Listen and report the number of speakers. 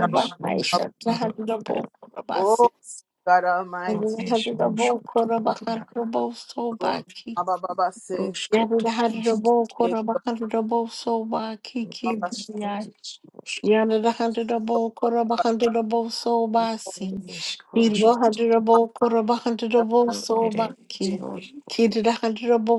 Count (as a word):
three